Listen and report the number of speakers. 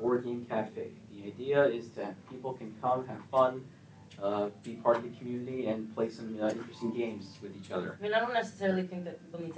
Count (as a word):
two